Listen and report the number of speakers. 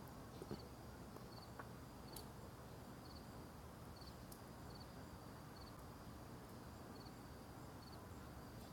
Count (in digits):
0